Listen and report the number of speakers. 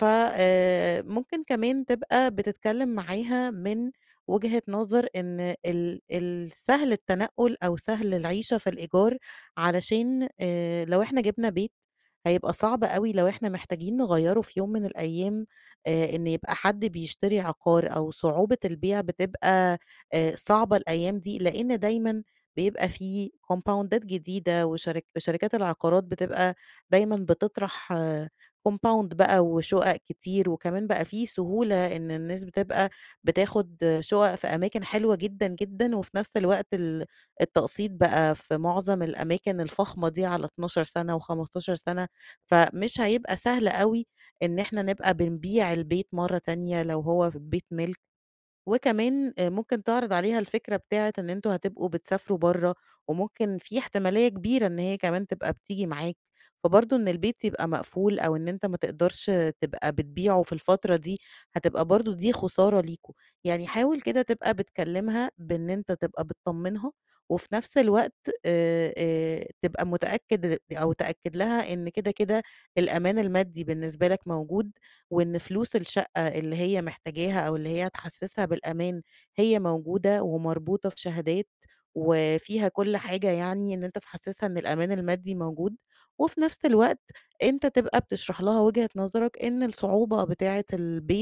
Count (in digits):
1